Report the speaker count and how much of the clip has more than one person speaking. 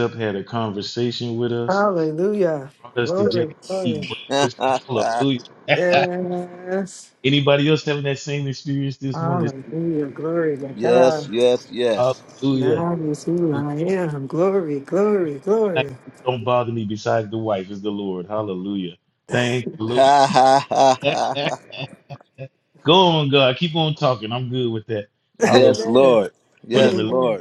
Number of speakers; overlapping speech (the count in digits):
3, about 16%